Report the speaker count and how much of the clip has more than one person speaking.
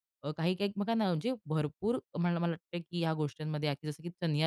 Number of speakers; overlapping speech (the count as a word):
one, no overlap